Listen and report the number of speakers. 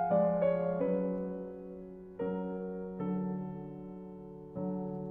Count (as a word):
zero